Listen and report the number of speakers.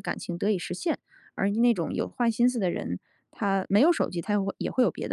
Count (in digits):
1